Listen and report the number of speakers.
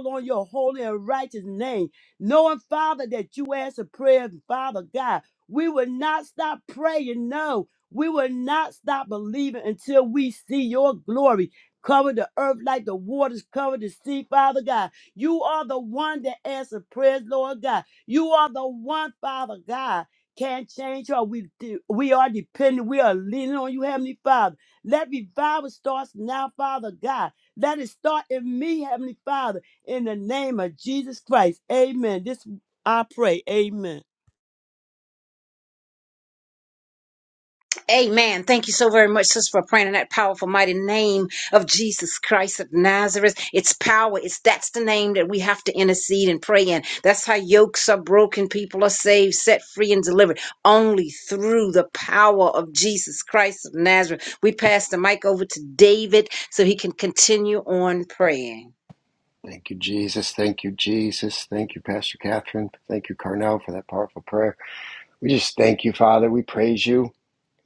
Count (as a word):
three